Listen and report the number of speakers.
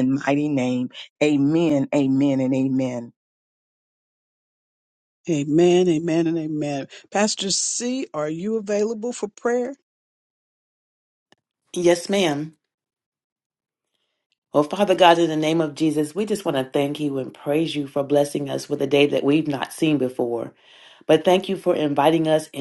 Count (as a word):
three